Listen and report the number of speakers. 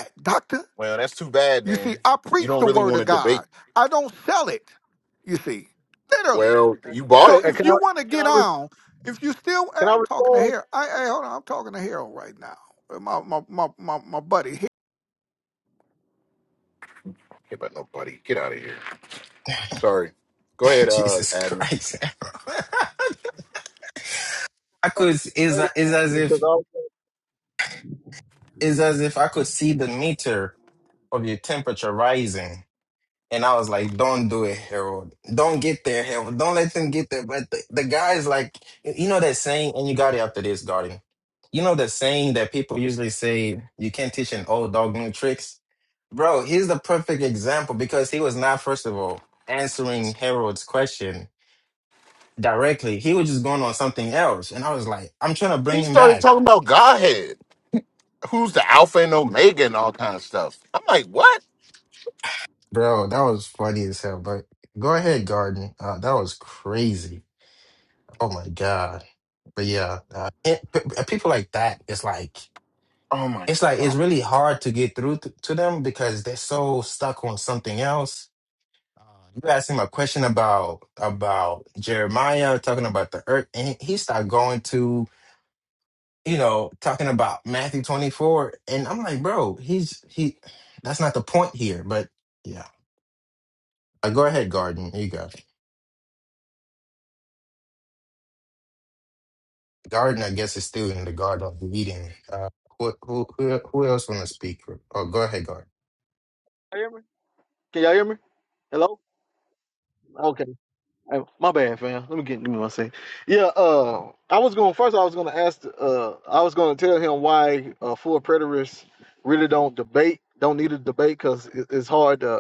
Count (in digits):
4